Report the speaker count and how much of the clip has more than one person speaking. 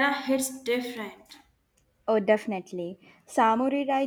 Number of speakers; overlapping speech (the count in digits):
2, no overlap